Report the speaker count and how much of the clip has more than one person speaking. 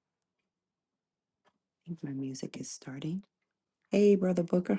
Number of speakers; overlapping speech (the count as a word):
one, no overlap